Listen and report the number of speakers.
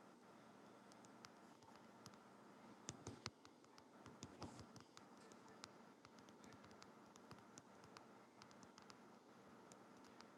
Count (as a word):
zero